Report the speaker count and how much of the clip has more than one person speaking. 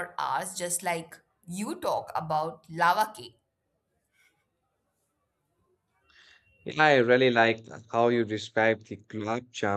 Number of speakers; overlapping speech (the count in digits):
2, no overlap